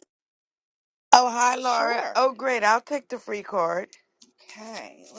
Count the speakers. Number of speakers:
2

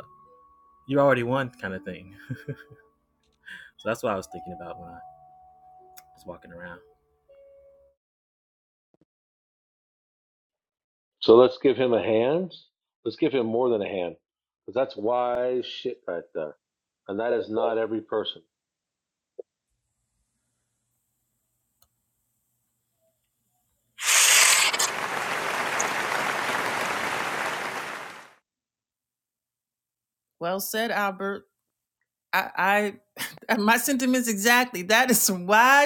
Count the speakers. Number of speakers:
3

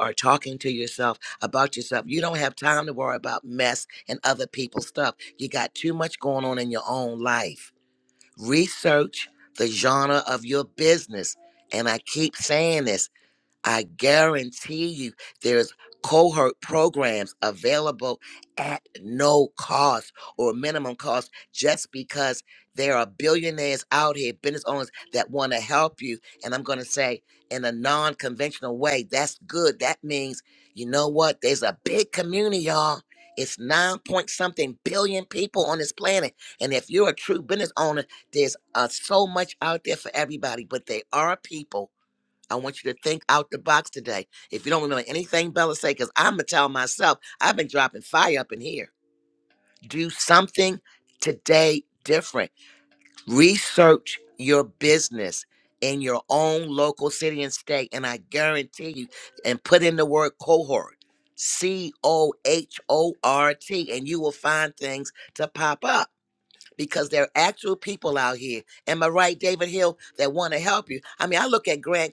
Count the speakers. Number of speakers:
1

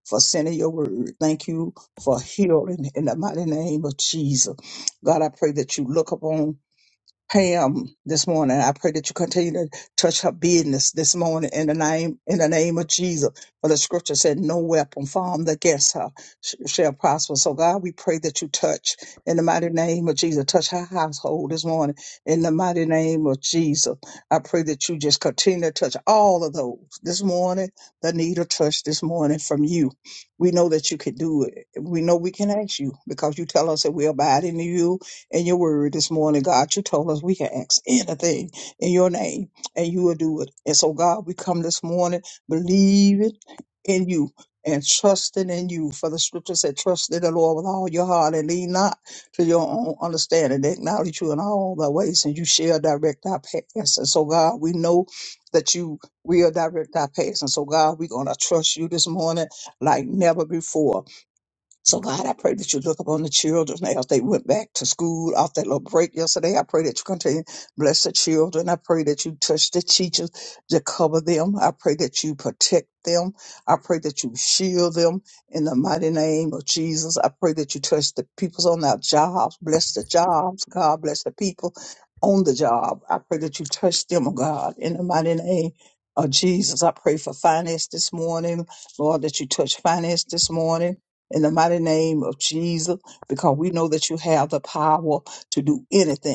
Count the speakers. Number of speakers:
1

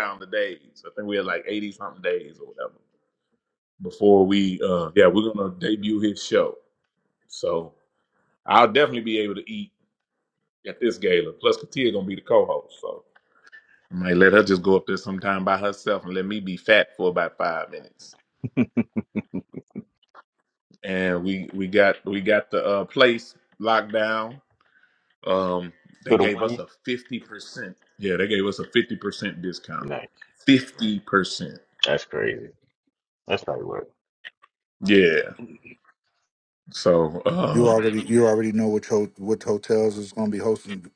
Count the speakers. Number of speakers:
3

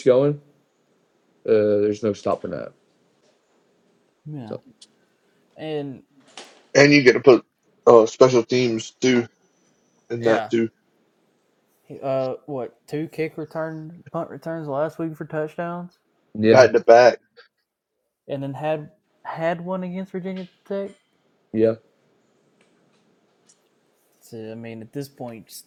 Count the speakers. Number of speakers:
3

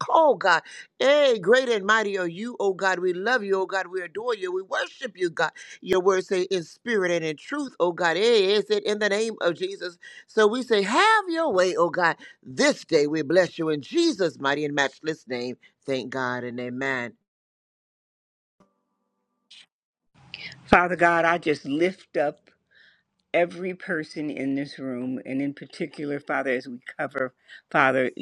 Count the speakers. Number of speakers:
2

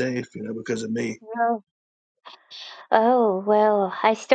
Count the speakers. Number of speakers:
2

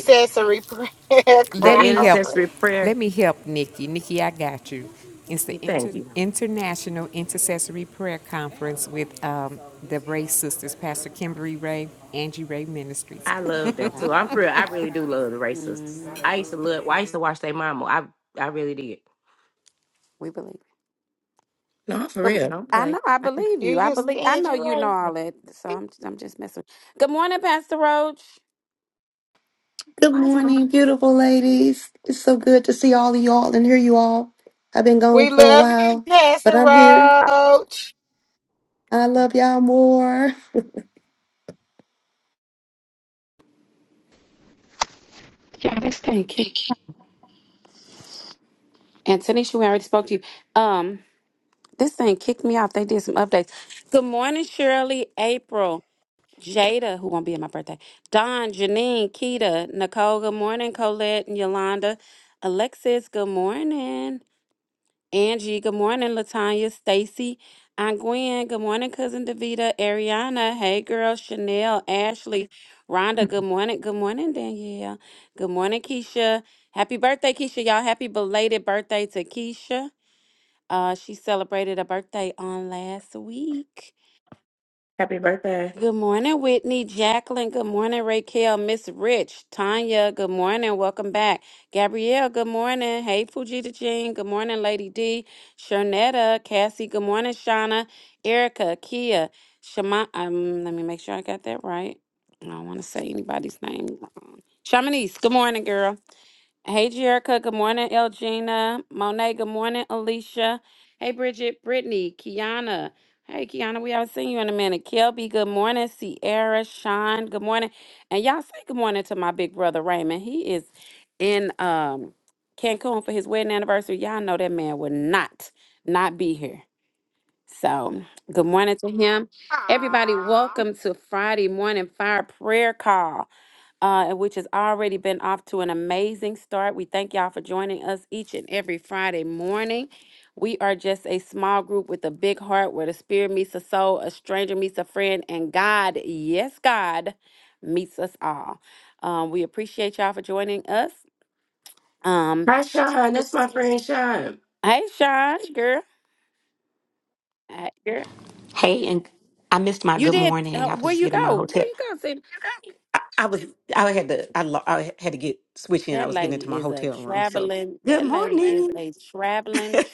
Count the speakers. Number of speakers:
6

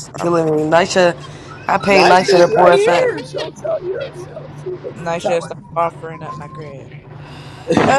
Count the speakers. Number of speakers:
3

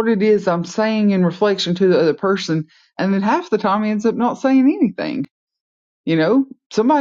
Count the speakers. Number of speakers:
1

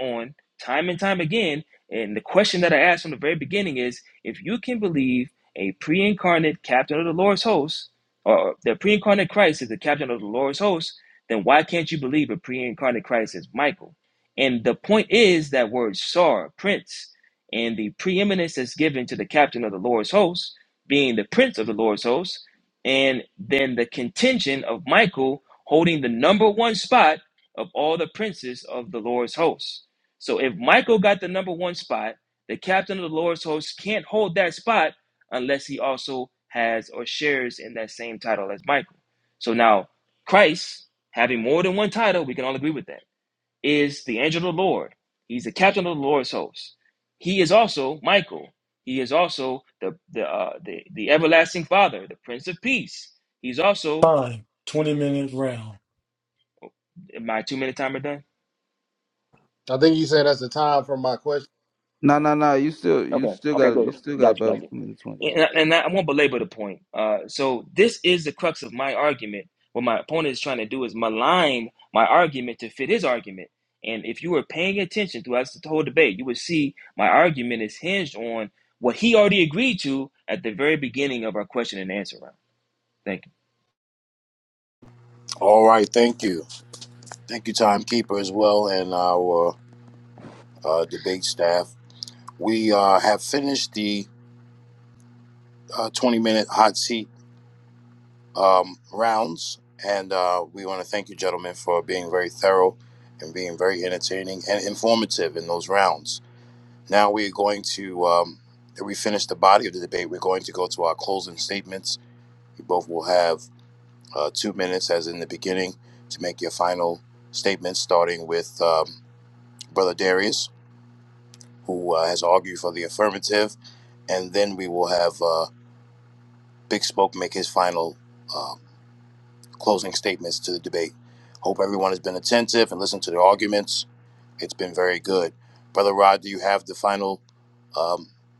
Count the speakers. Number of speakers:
5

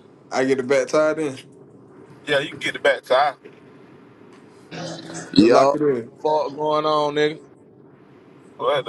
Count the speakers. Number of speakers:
3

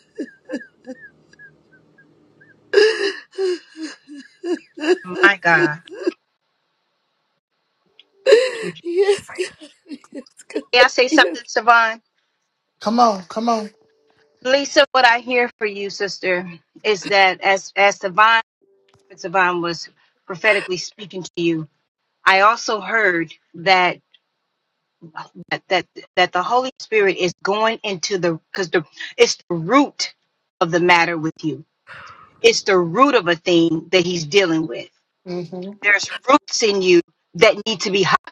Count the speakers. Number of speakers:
3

